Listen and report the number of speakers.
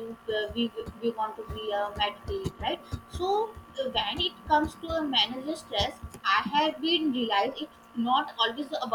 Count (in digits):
1